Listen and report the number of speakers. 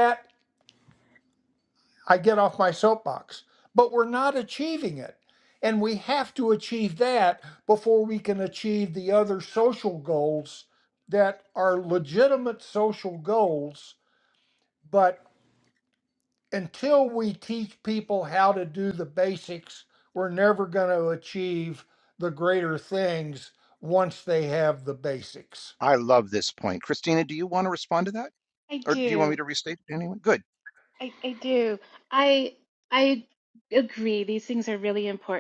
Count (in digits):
3